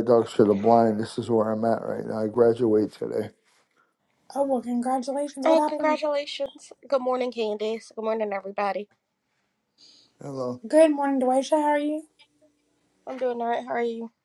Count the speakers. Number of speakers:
3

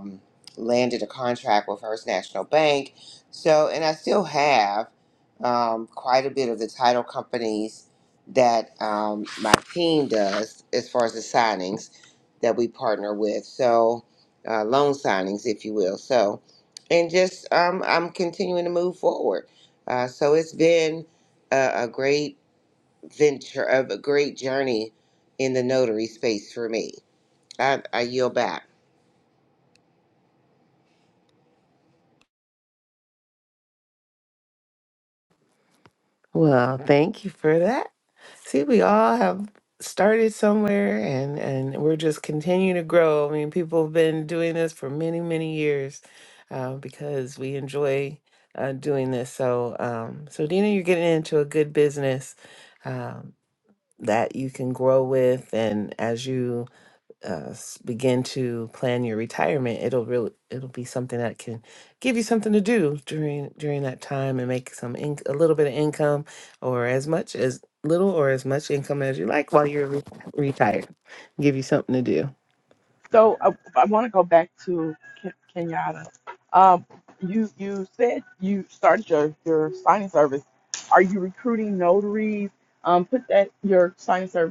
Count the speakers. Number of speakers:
3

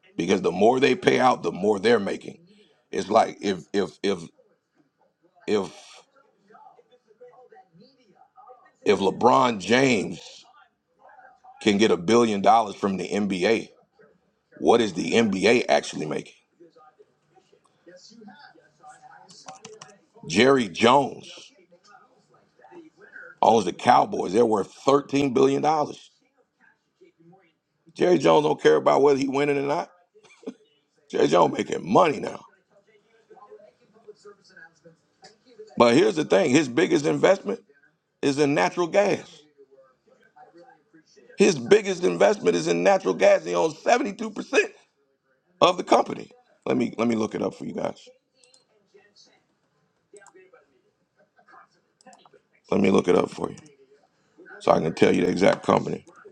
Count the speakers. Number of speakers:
1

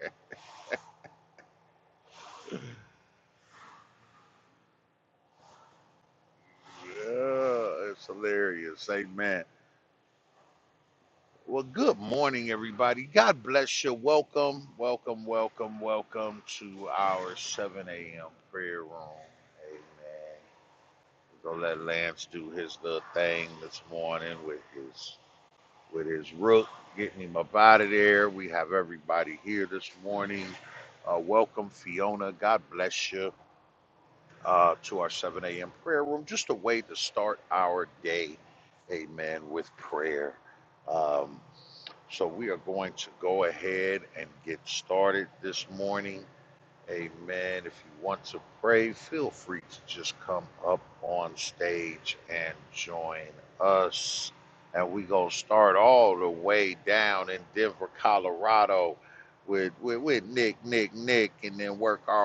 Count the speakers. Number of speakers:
1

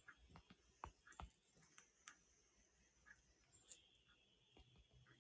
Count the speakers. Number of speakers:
0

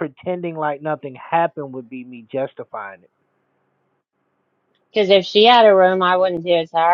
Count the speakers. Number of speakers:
2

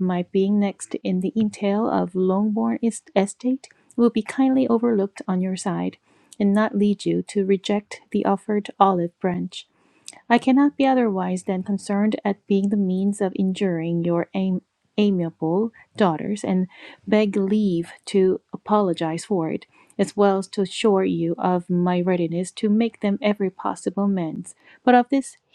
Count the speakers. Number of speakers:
1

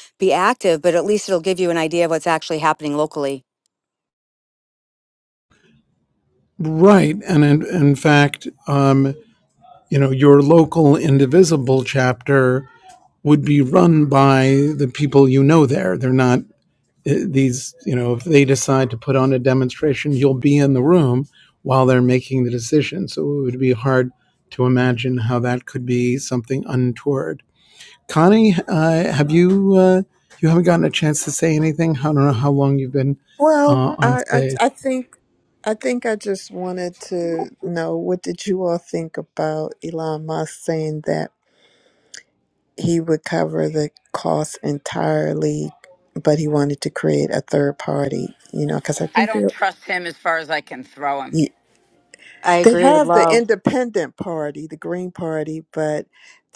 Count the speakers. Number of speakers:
4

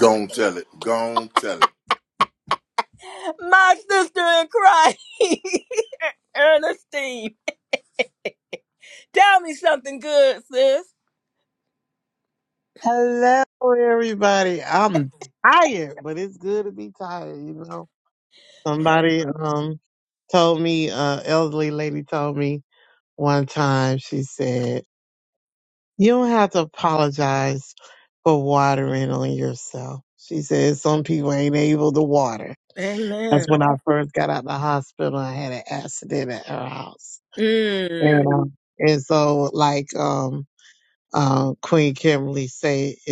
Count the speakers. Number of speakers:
3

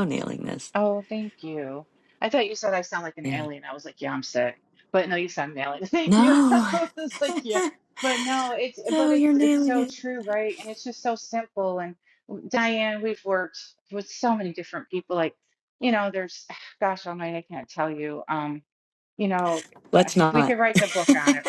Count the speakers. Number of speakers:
2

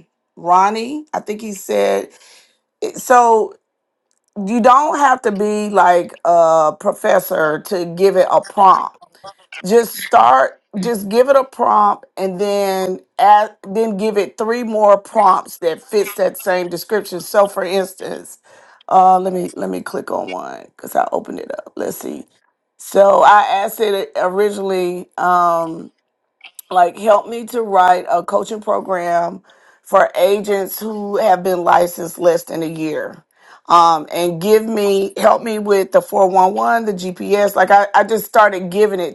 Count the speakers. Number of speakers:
1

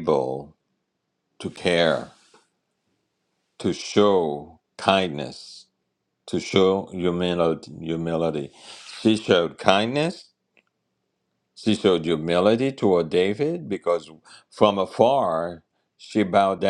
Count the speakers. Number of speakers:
1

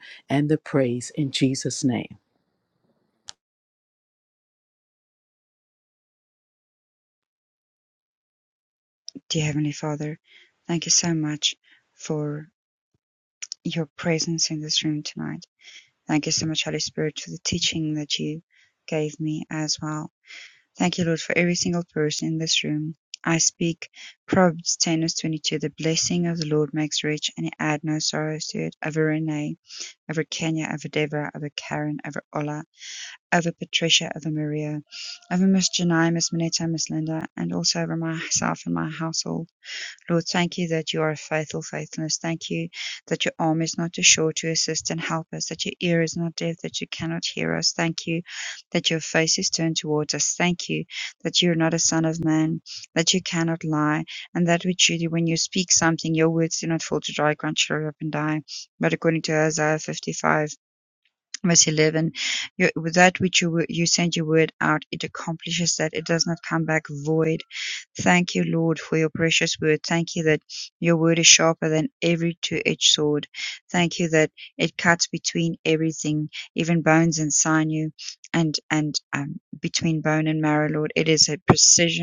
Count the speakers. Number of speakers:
2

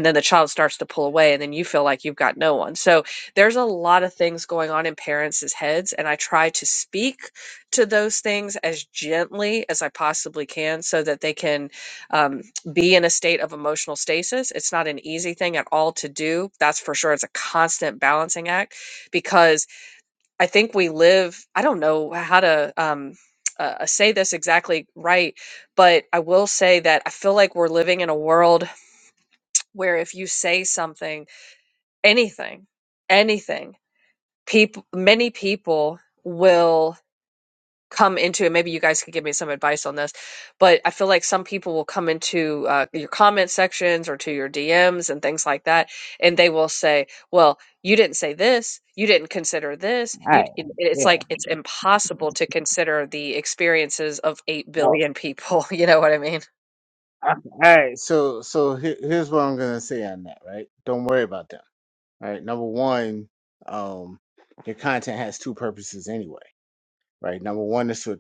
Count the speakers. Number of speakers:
2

